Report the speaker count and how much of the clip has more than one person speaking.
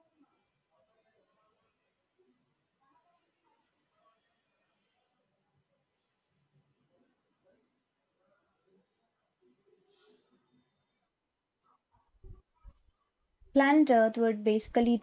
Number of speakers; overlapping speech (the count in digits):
1, no overlap